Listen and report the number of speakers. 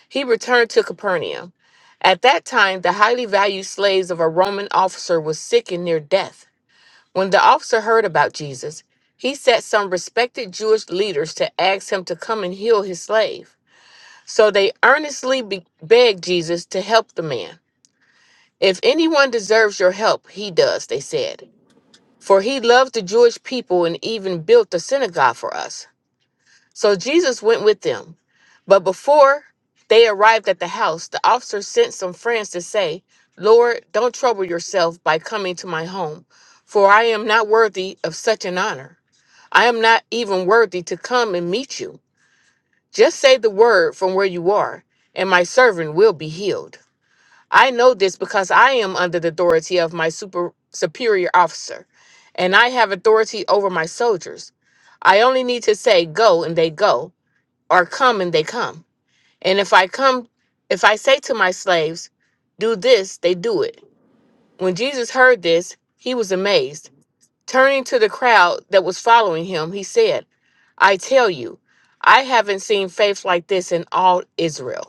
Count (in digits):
1